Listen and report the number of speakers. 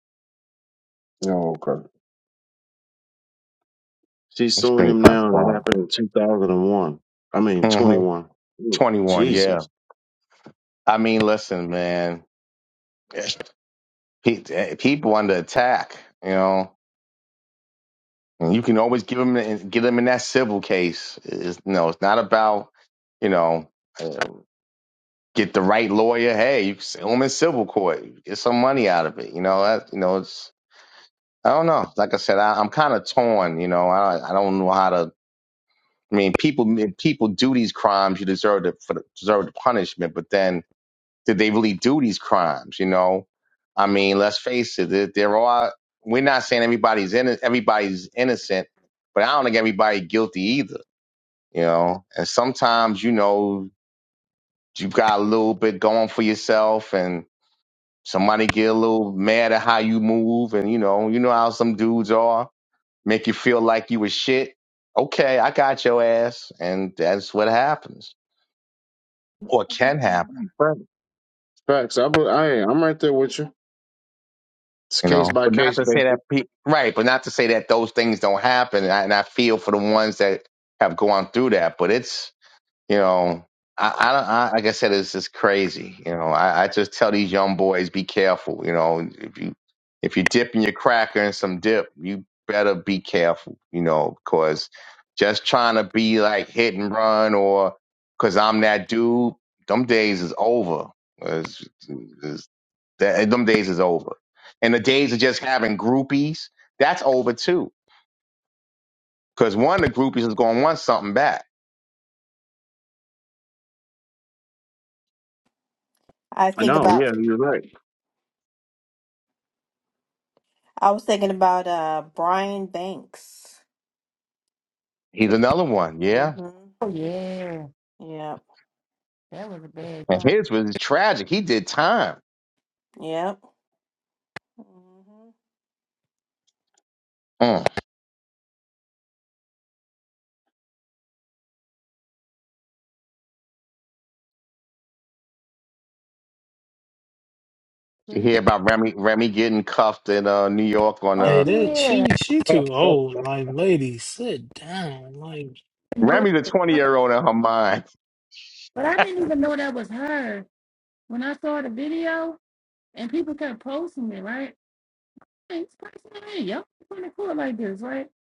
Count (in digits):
5